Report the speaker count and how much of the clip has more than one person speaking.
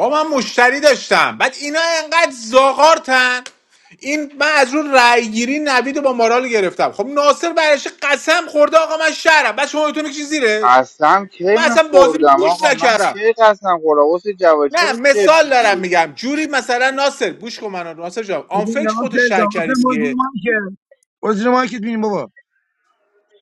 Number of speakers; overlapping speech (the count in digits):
3, about 19%